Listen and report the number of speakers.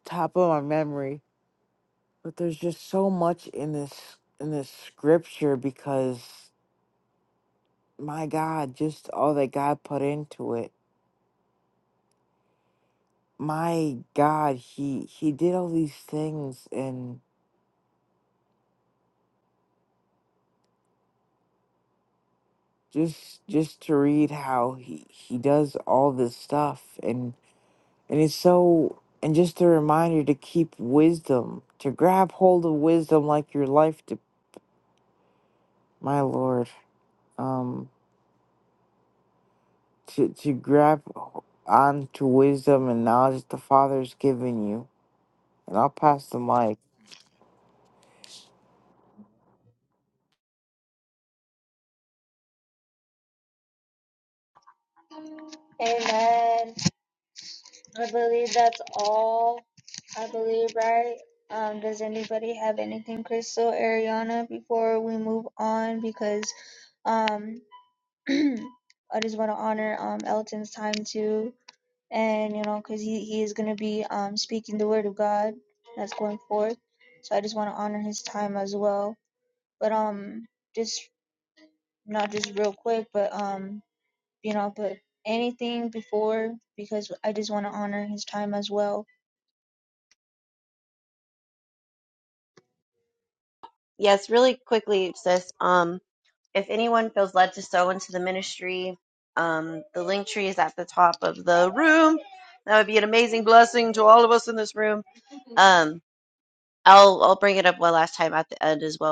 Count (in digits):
3